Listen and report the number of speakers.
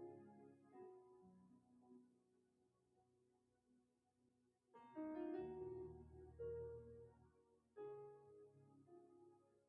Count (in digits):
0